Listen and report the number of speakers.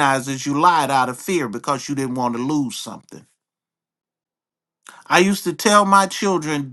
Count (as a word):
one